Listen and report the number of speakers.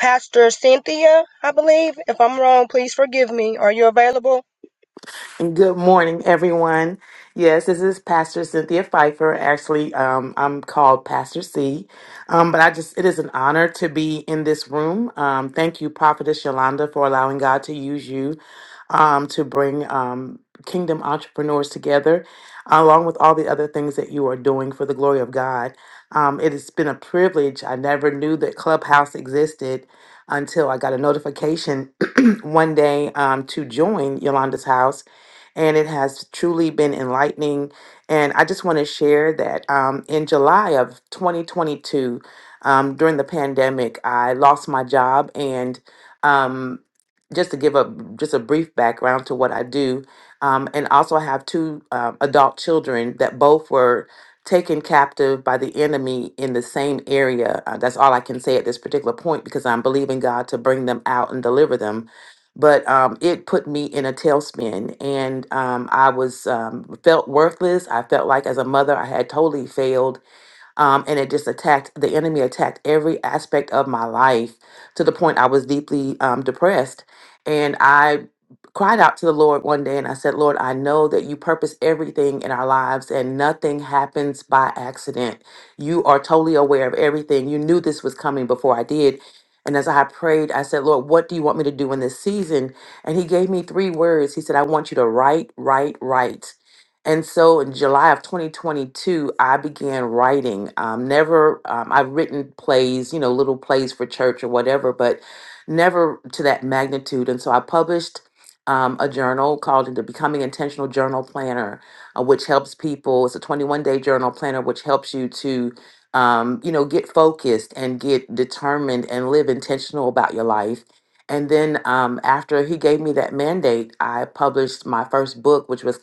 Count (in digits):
2